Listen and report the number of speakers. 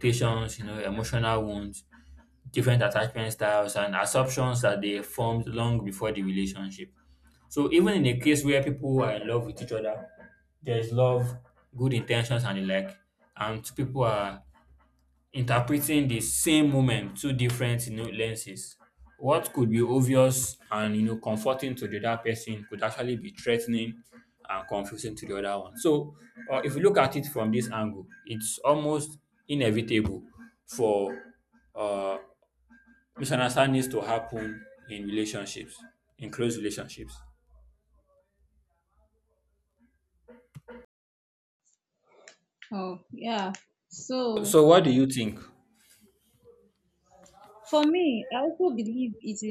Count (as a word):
two